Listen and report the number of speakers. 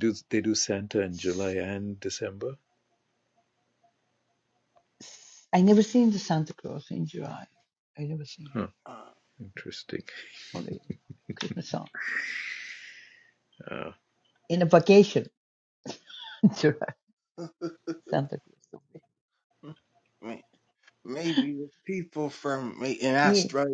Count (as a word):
three